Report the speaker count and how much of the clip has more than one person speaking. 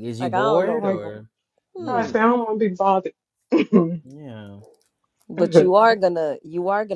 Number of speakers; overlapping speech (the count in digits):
3, about 18%